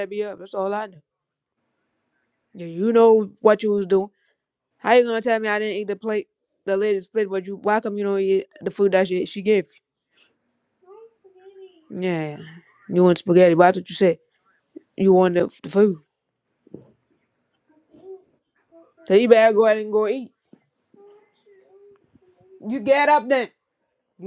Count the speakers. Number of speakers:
one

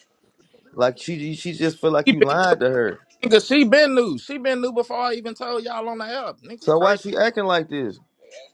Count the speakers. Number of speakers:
two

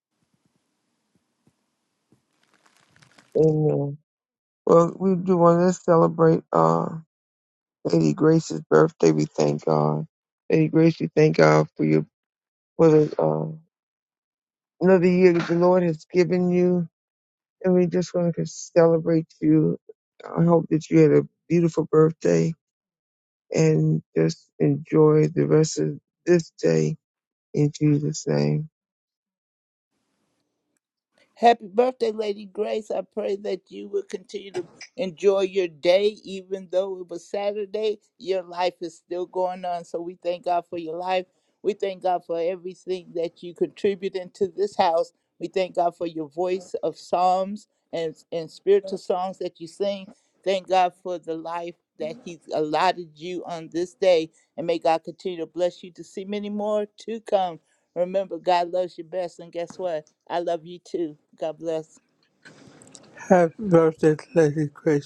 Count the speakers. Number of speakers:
three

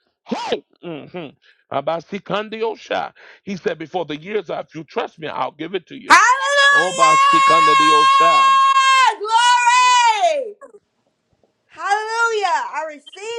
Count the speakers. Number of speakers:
two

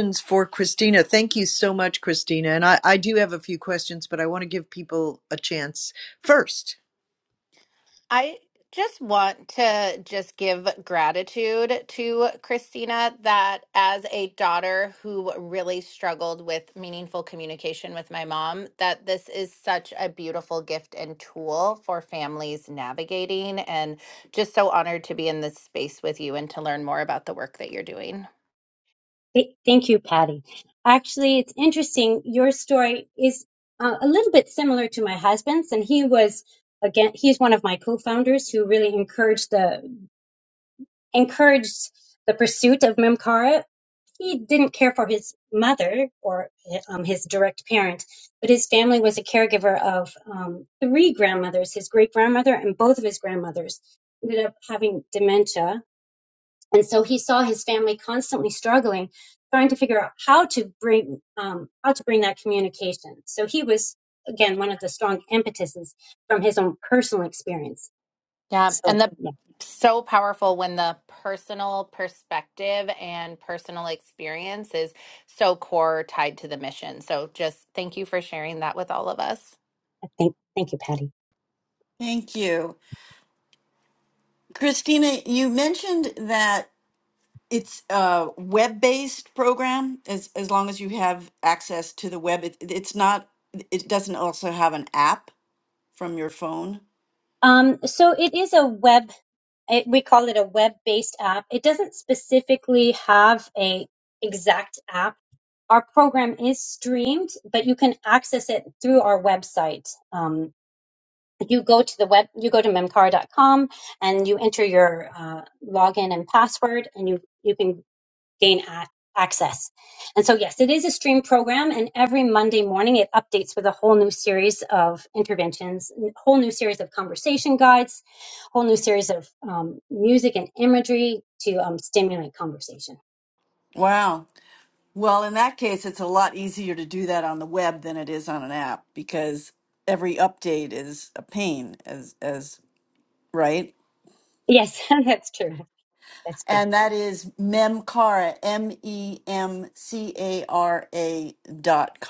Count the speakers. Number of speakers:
four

